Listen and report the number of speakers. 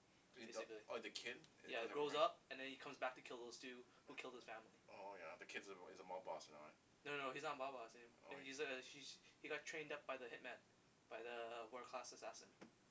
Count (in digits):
2